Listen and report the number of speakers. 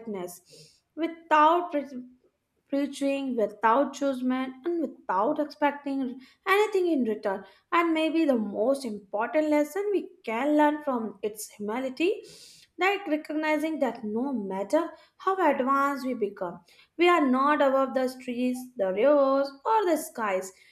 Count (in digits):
1